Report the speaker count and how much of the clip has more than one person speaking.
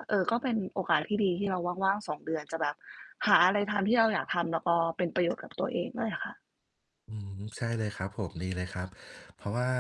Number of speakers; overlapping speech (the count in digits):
2, no overlap